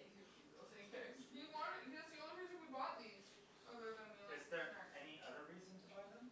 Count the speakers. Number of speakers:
three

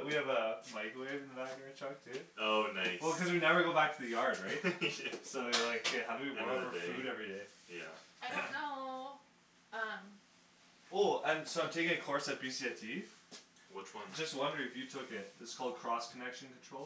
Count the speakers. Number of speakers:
three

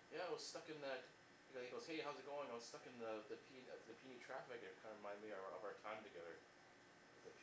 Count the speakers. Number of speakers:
one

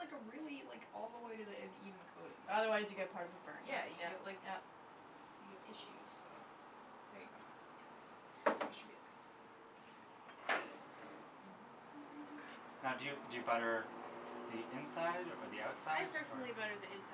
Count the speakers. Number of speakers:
four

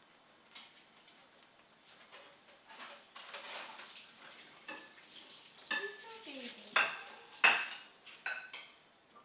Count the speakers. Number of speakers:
one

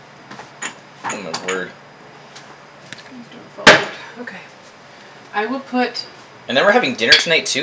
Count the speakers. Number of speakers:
two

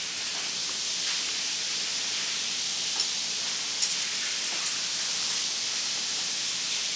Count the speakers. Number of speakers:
zero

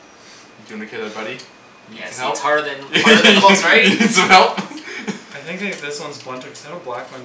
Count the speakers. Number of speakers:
three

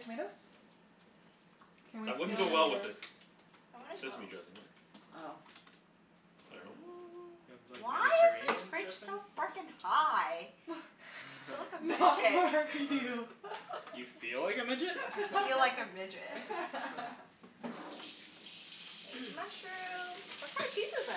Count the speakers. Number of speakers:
four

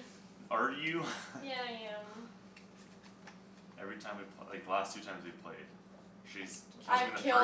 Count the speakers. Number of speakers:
two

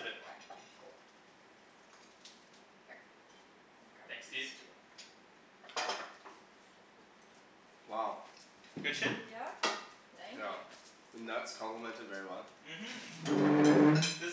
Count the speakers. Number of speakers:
three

